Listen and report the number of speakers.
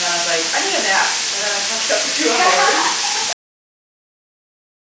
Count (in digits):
1